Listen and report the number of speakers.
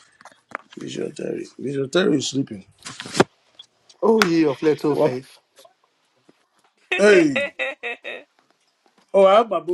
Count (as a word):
two